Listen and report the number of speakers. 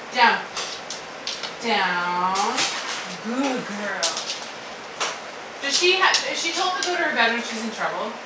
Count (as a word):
one